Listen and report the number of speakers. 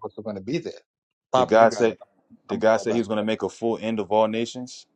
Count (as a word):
two